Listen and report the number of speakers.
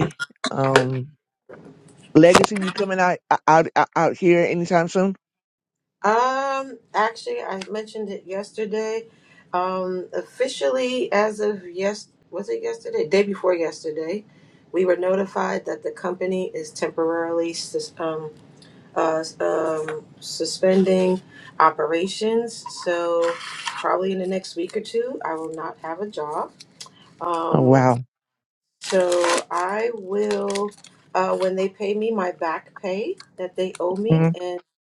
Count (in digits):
2